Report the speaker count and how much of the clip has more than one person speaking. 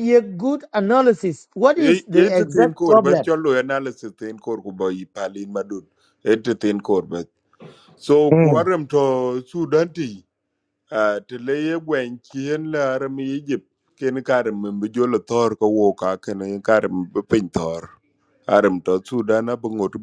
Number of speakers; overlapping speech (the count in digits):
2, about 9%